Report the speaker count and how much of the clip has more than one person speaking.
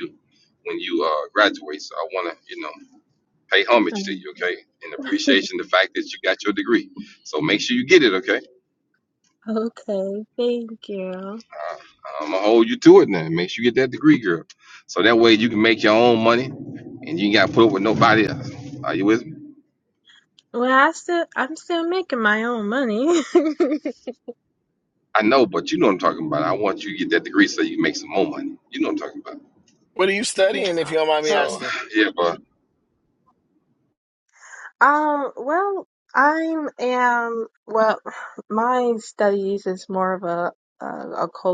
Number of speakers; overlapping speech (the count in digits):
3, about 1%